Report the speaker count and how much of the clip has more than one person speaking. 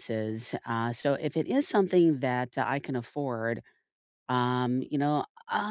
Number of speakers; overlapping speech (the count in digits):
1, no overlap